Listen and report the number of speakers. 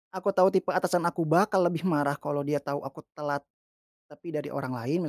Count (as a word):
one